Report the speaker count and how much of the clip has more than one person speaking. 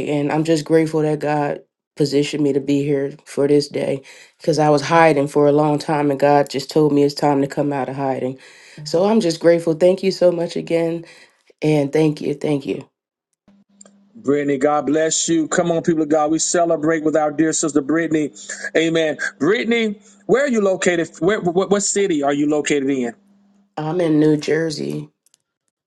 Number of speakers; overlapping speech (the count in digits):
2, no overlap